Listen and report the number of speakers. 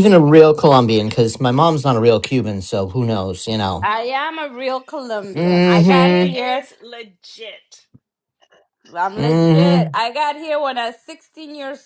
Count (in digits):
3